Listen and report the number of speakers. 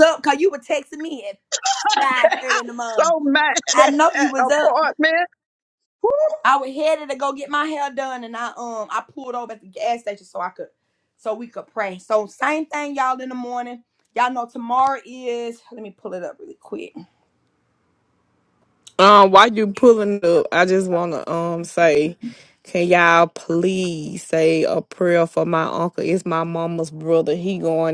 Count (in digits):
3